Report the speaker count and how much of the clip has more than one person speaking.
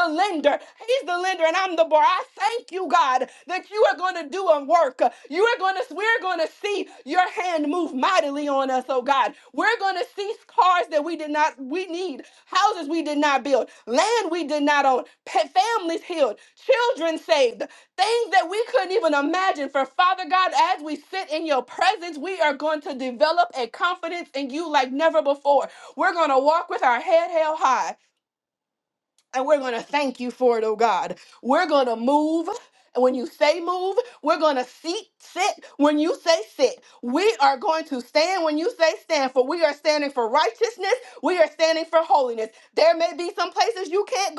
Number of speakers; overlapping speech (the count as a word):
one, no overlap